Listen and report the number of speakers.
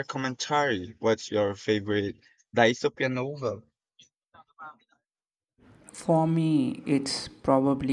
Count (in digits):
2